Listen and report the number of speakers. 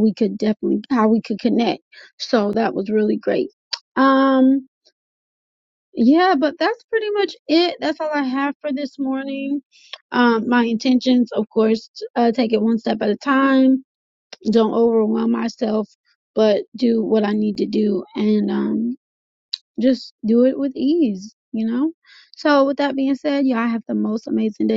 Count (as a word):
one